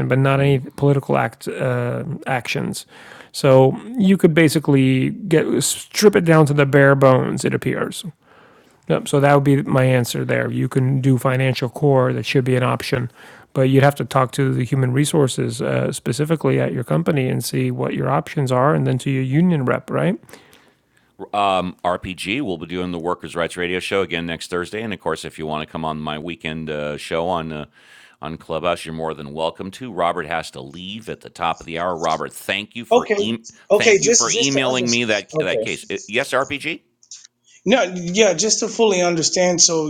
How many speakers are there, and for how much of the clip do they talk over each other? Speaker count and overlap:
three, about 5%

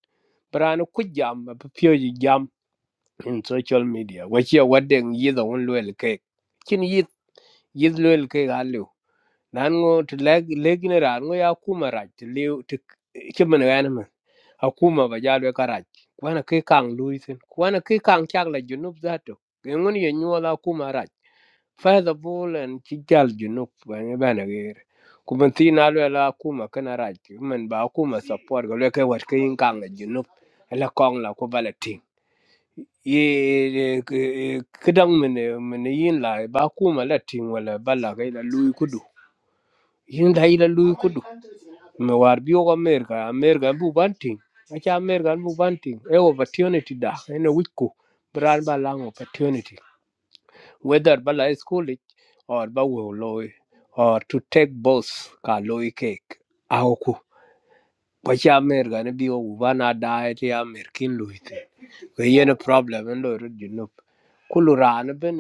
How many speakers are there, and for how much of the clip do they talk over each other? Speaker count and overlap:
one, no overlap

